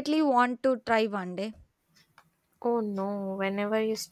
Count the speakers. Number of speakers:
2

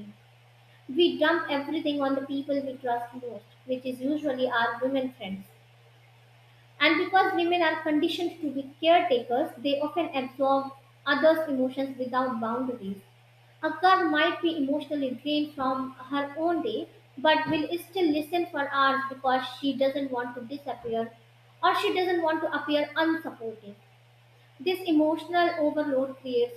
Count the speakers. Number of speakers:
1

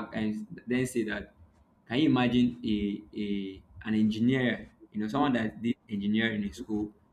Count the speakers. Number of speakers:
1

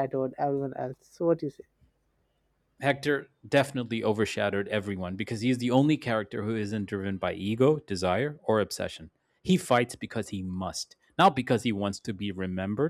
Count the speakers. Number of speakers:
2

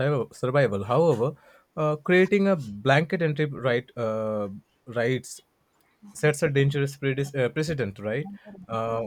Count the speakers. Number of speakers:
1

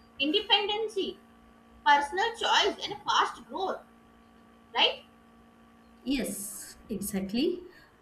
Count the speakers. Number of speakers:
2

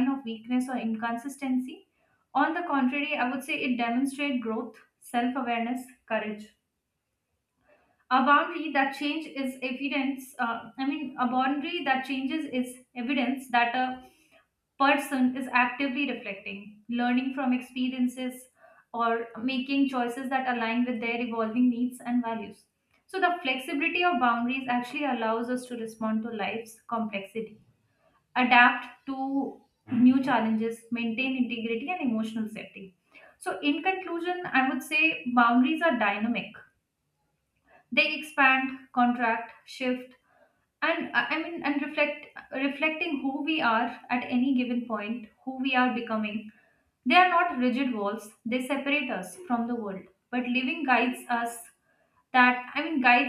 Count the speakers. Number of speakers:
1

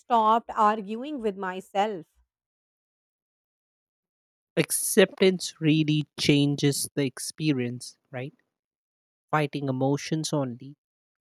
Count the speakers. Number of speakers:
2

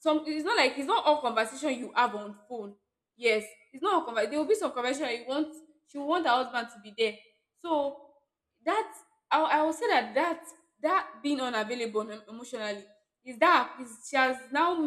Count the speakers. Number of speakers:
1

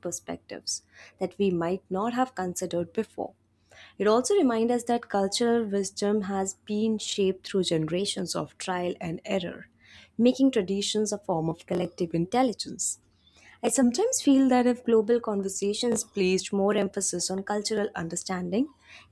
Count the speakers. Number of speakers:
1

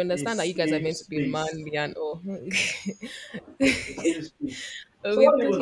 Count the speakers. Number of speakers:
2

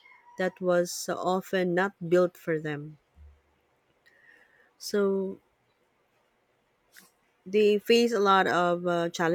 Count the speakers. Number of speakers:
1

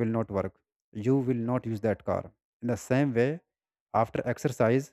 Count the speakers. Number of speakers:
1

